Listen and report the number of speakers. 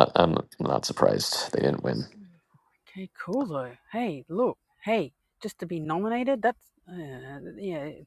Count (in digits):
2